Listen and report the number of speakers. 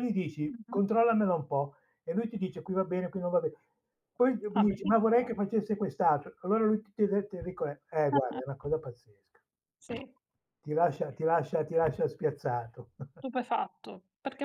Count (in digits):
2